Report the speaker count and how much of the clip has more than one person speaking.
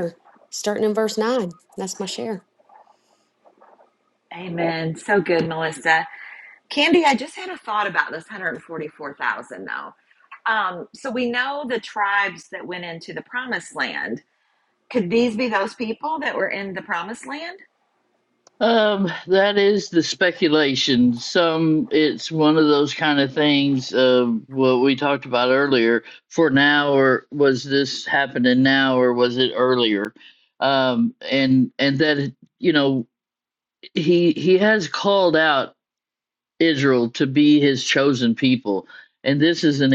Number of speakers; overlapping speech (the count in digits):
3, no overlap